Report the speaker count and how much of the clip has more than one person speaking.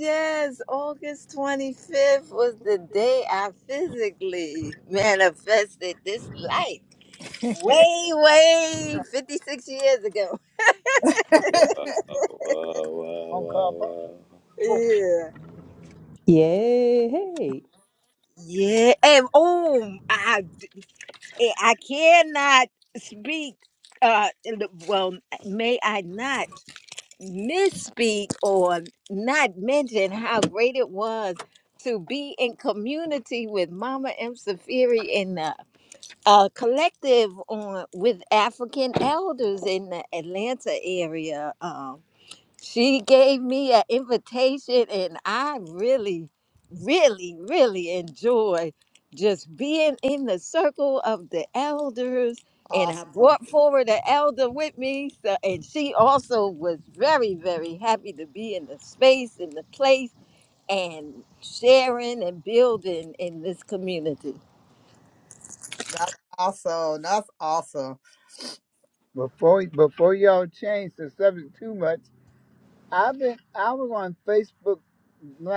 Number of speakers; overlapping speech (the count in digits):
5, about 2%